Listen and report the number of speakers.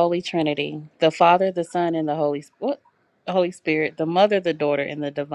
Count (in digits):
1